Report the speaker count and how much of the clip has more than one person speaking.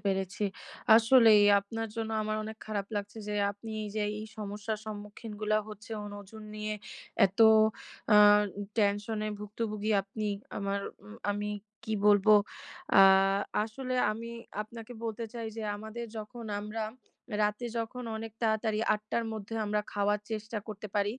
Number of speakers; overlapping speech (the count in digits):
1, no overlap